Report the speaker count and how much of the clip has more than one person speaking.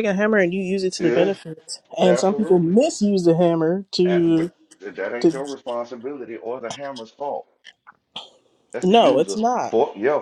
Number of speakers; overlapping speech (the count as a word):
two, about 26%